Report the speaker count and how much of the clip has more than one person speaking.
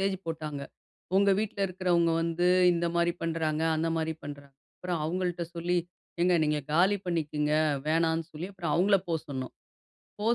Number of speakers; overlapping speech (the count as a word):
one, no overlap